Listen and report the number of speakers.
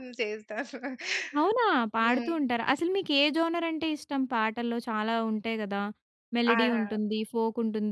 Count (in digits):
2